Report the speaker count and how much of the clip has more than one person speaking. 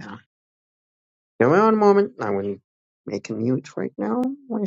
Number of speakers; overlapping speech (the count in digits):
1, no overlap